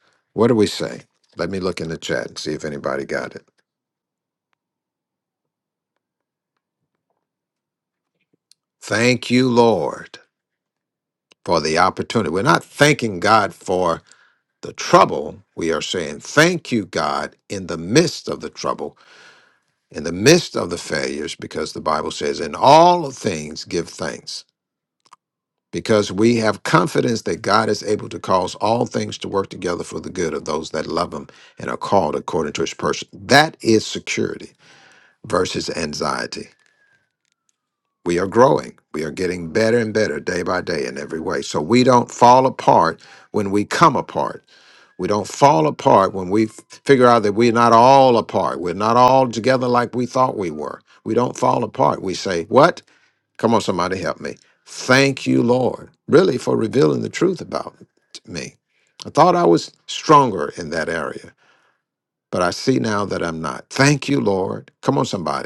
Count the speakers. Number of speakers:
1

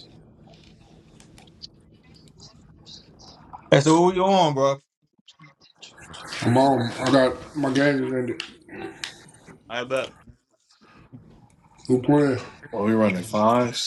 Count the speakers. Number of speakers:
3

